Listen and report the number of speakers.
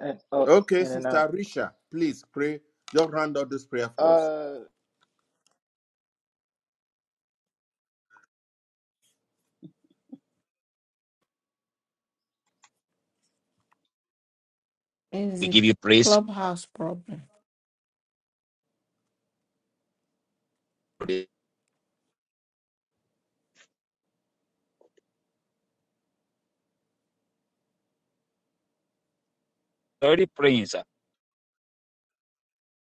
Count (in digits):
4